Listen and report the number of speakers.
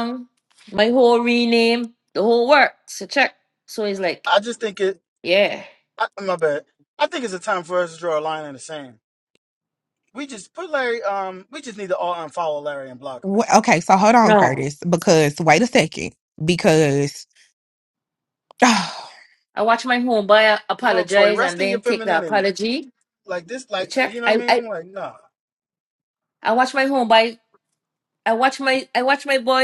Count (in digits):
3